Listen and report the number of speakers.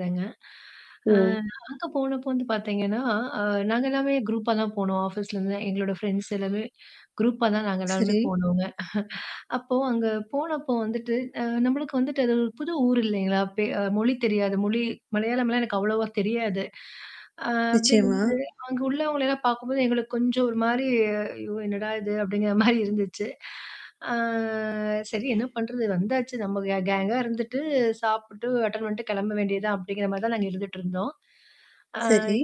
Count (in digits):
2